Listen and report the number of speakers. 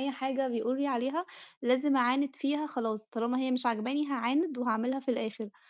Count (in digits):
1